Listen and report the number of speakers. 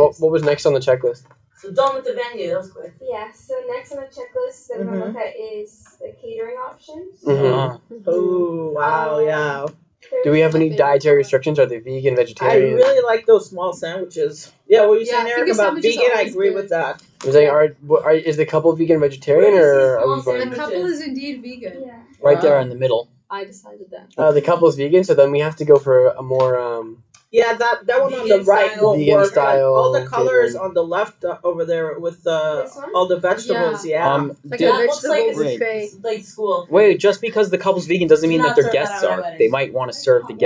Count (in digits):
6